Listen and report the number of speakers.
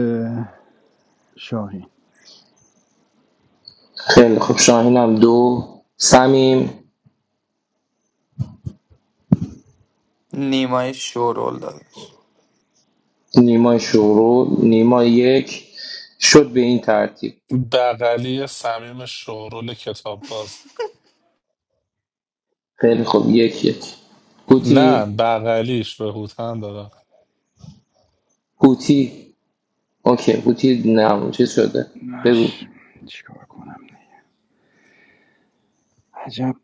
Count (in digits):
4